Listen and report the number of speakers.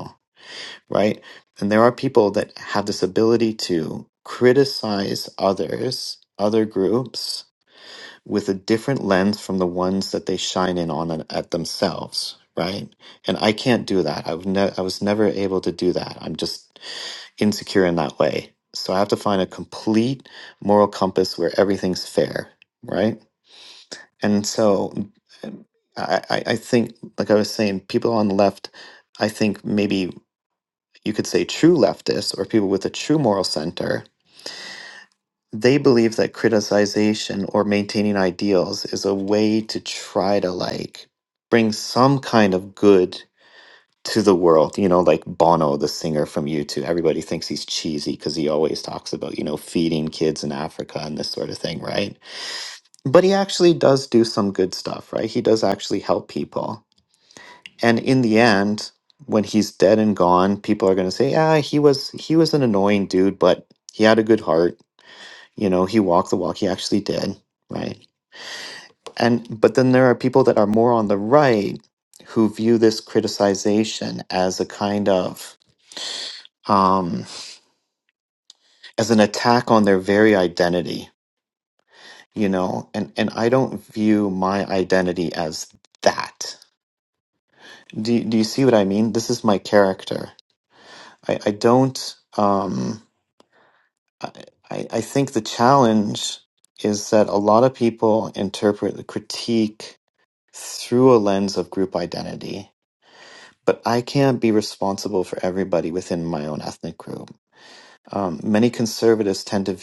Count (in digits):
1